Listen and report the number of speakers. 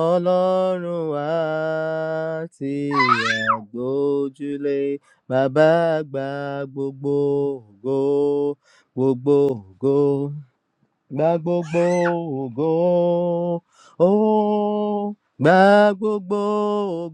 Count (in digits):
1